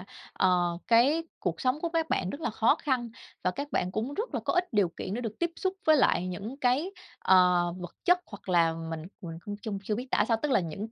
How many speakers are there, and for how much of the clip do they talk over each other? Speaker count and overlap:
one, no overlap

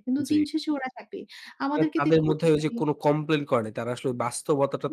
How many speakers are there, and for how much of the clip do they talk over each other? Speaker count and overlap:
two, about 17%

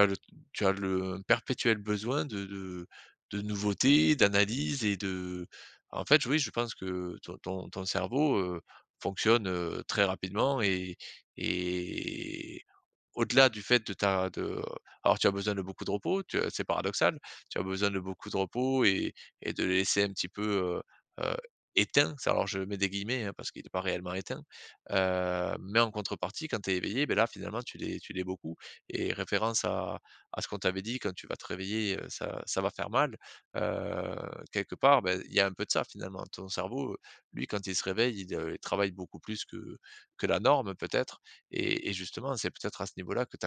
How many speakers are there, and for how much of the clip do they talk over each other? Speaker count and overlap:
one, no overlap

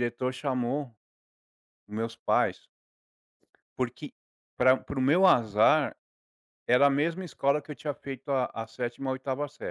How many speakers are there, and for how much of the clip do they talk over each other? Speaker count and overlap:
one, no overlap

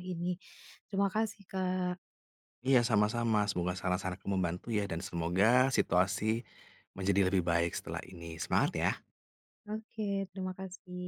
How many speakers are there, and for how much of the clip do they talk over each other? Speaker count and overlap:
two, no overlap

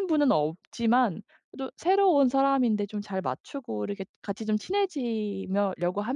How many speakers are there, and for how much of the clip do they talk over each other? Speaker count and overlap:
one, no overlap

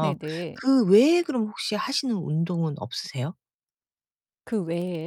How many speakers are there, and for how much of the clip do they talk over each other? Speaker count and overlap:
two, about 4%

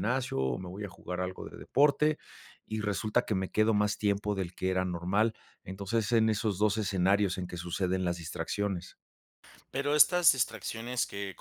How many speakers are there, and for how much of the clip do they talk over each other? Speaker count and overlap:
two, no overlap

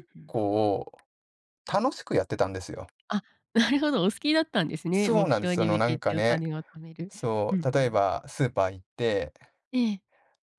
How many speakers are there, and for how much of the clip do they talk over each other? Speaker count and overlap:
two, about 20%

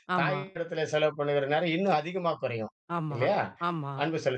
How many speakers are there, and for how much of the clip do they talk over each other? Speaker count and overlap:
two, about 10%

